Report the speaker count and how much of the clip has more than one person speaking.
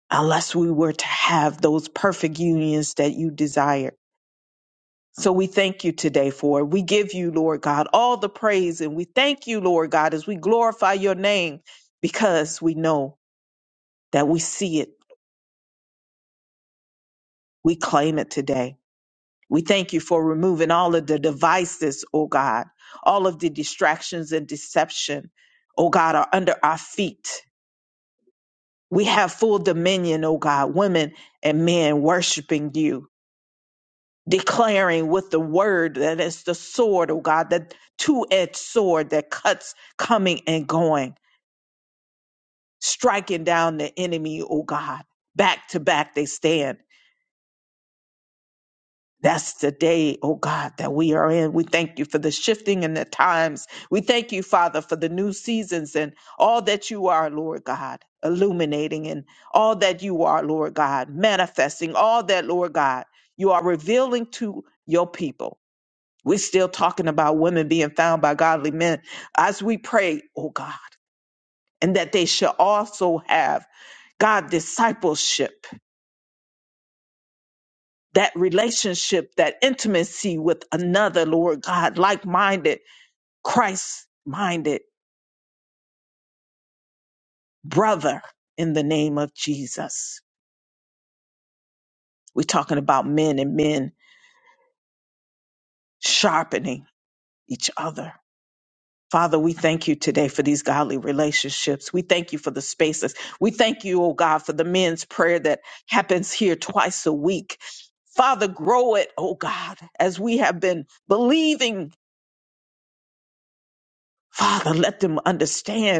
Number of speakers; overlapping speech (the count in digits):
1, no overlap